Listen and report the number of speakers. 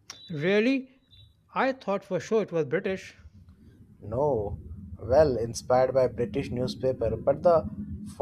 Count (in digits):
2